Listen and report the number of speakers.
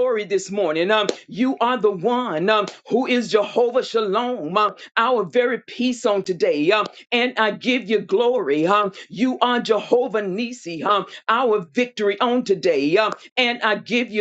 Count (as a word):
one